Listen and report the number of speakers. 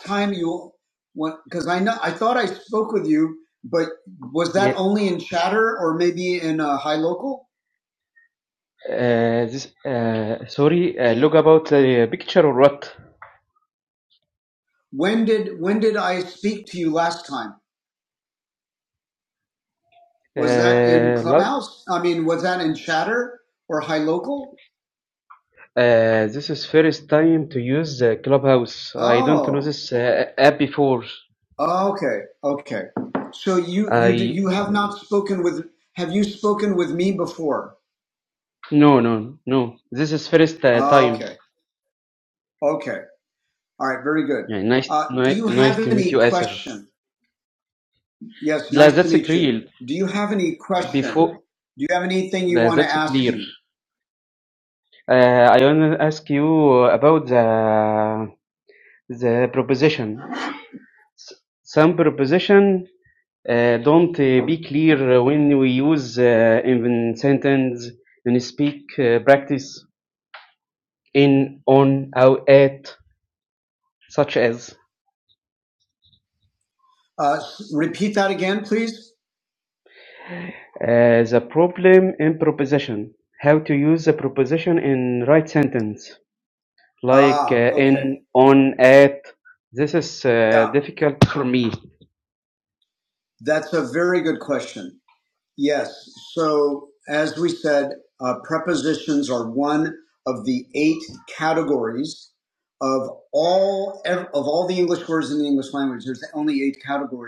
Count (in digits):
2